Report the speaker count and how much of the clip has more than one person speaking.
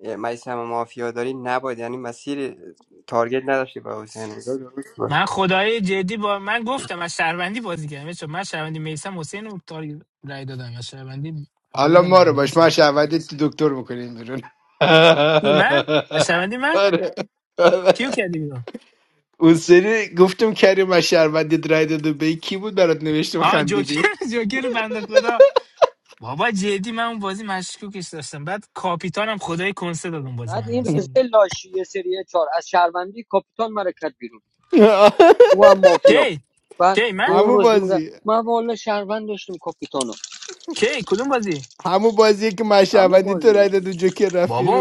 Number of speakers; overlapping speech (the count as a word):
four, about 11%